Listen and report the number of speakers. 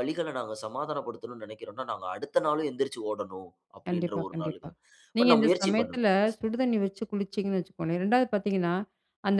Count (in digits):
2